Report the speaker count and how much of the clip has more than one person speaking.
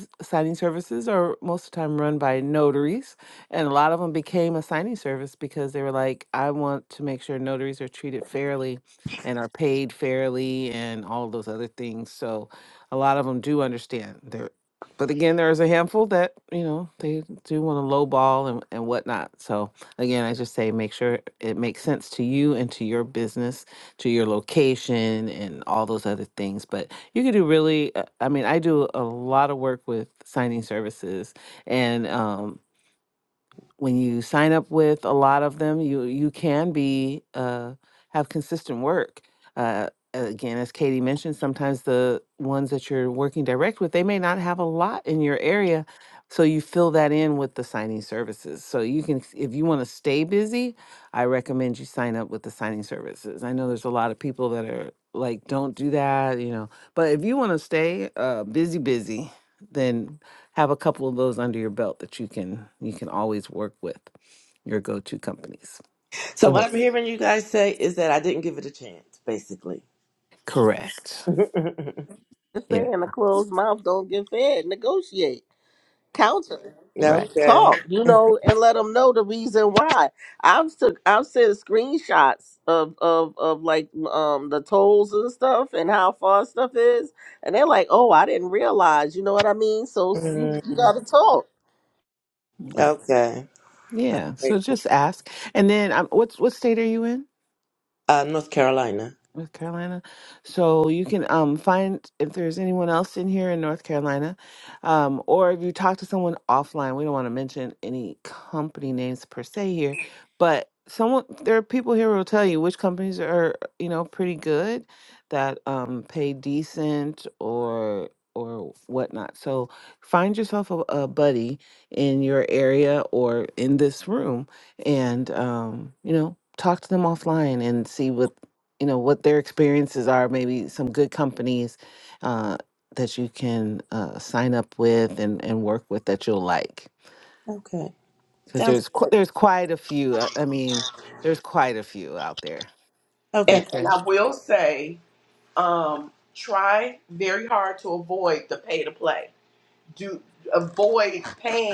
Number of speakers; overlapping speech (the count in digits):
4, about 2%